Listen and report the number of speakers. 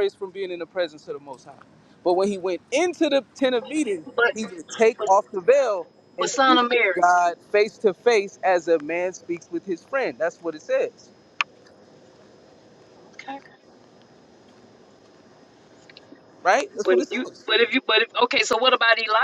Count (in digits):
2